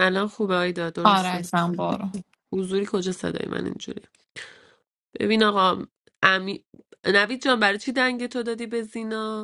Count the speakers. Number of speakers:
two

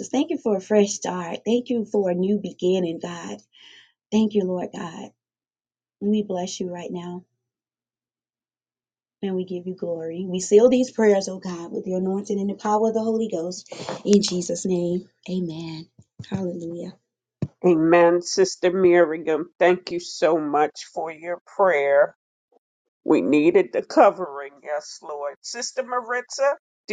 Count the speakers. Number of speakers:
two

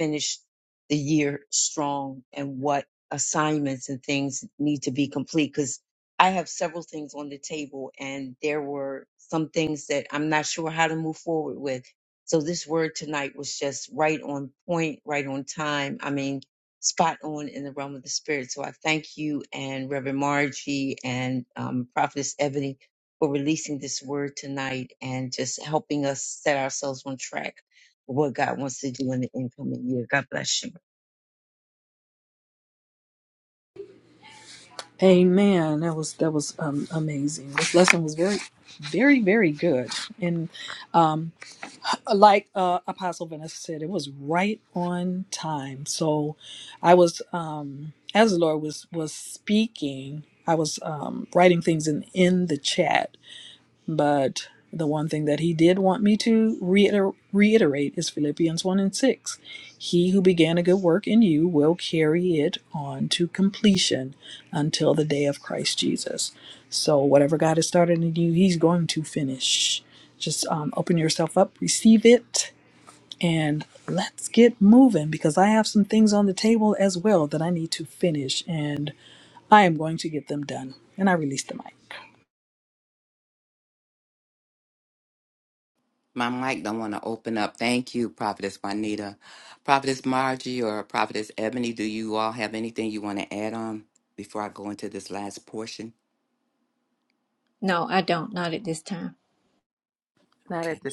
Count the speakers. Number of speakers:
four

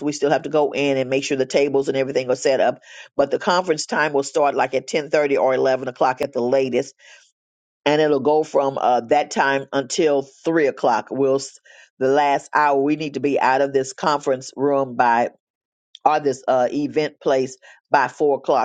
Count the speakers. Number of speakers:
one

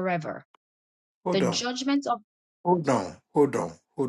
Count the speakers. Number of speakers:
two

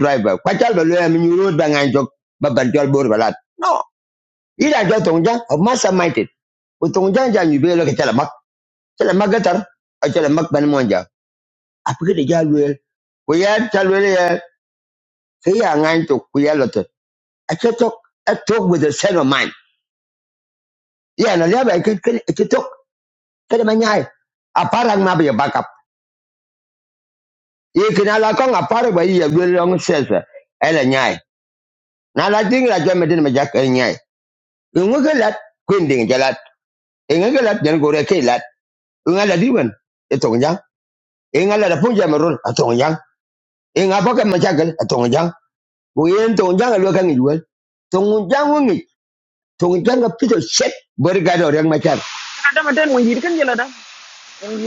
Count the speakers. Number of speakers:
two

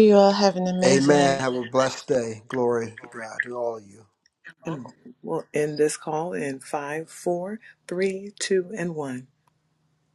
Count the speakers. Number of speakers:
three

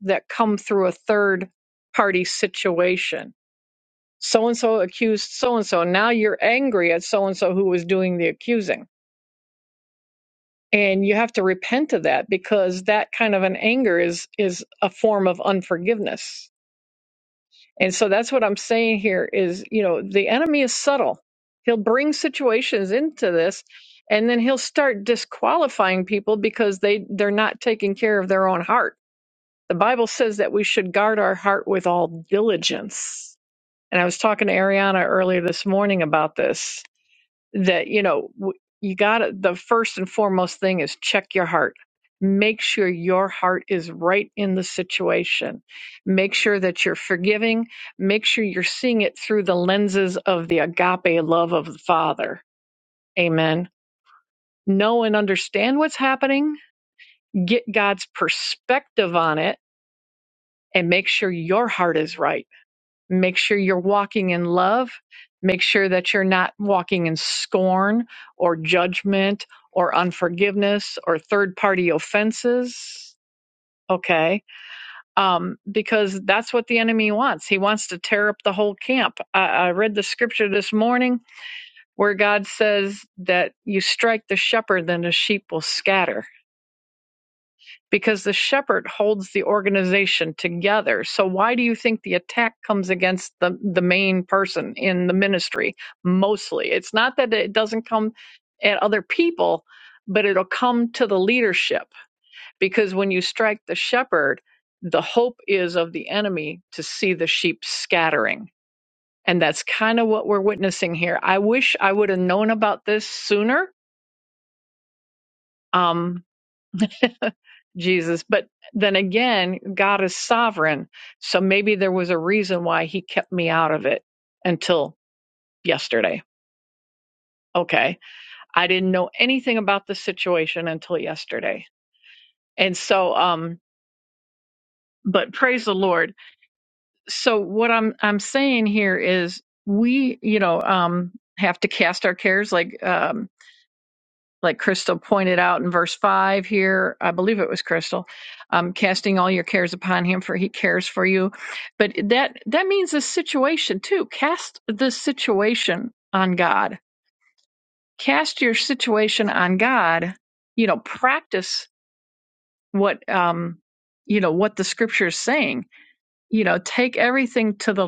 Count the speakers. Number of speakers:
one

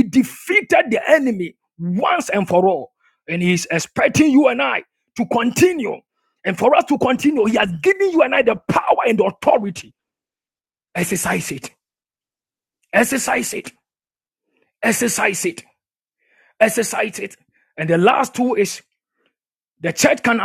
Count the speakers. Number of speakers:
one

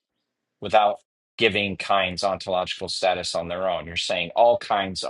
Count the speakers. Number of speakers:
one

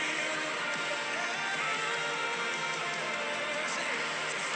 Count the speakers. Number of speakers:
zero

